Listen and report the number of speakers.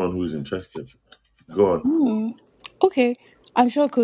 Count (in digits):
2